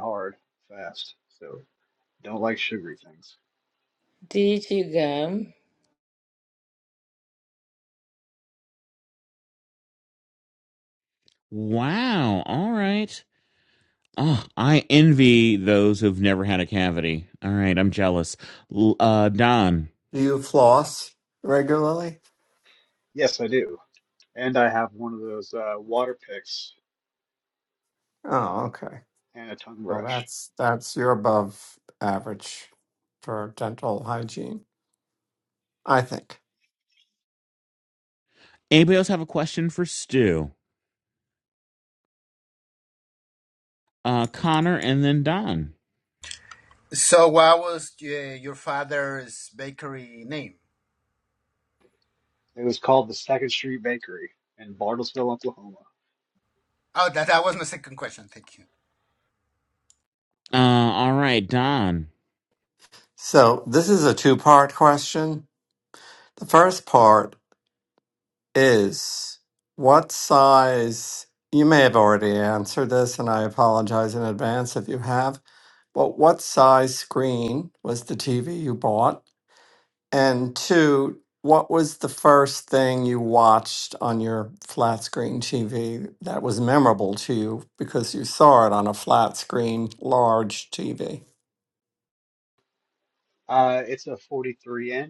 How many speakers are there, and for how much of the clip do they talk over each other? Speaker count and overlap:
five, under 1%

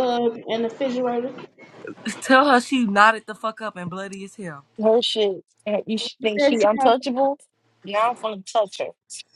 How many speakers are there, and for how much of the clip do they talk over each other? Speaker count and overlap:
three, about 8%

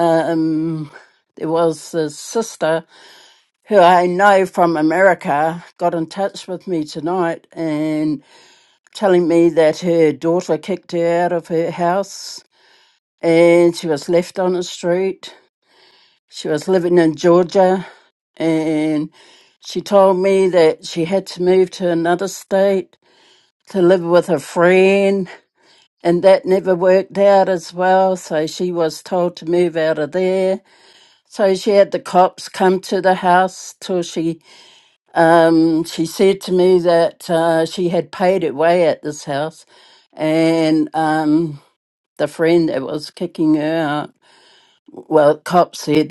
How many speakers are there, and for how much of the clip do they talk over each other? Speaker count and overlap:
one, no overlap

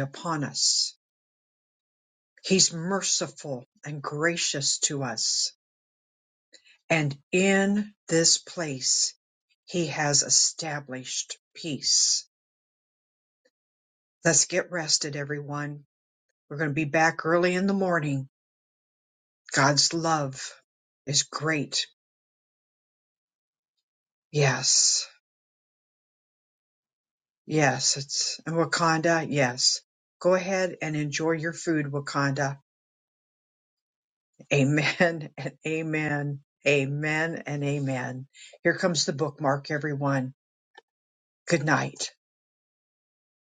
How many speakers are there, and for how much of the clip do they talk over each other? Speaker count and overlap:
one, no overlap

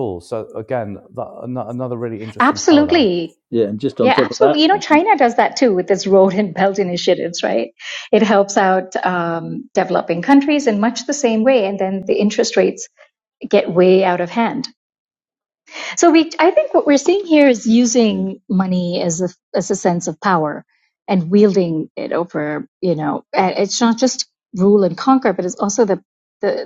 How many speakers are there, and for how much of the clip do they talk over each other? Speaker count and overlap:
three, about 5%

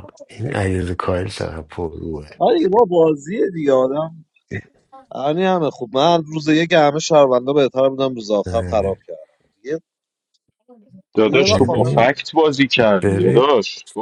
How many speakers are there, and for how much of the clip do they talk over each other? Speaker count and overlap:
three, about 13%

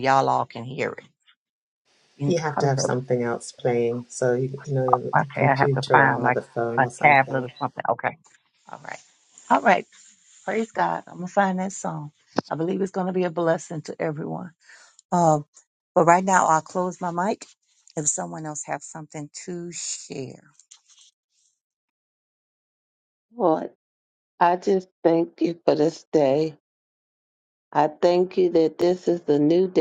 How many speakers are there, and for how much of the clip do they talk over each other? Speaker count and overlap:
three, about 8%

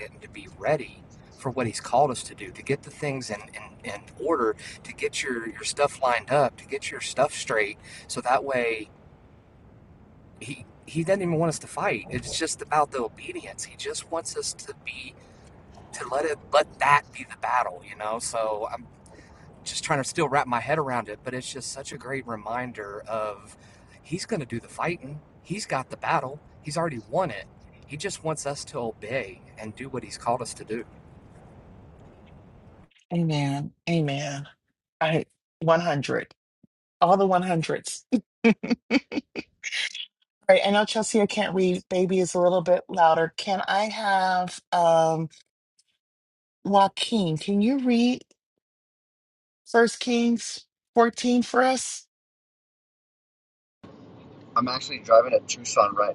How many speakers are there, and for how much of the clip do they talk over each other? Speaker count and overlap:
three, no overlap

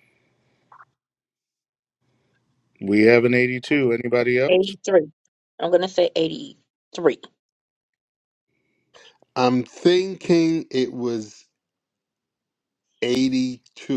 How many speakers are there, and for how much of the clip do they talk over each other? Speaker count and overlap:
three, about 2%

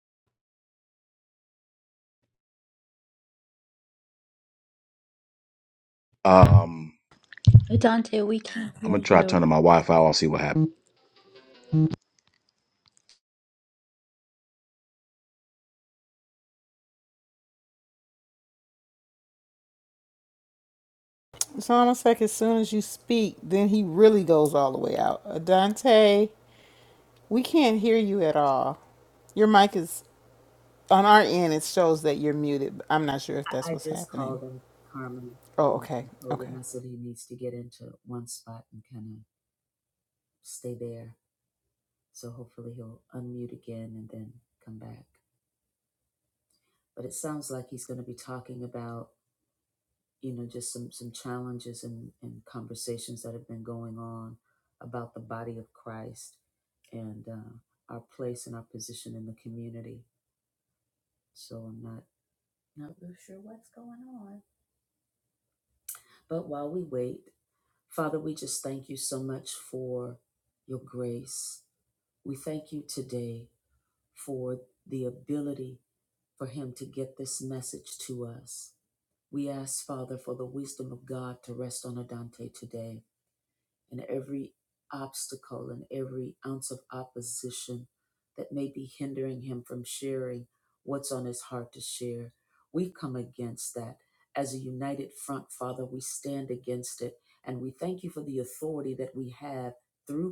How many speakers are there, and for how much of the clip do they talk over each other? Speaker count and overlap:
four, about 2%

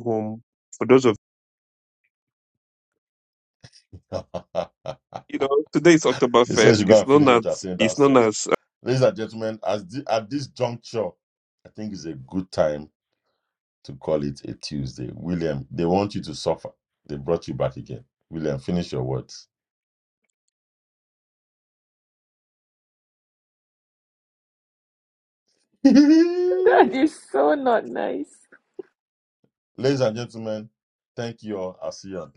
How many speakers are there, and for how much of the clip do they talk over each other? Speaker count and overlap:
three, about 5%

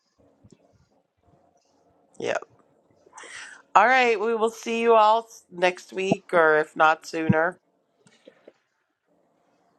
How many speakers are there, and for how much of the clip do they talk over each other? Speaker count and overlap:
one, no overlap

